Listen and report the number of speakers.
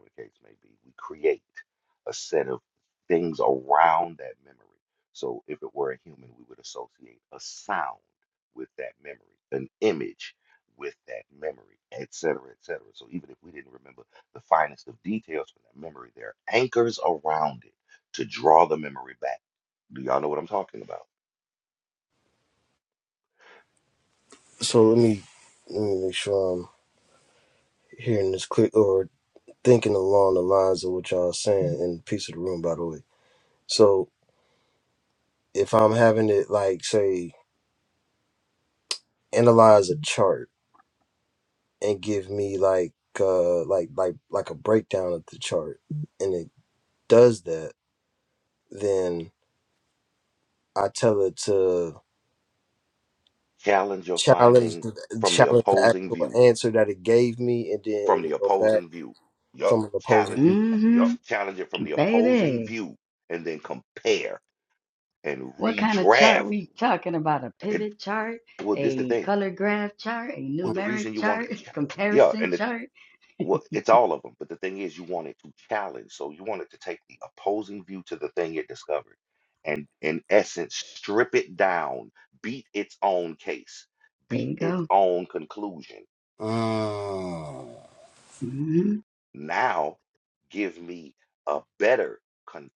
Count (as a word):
three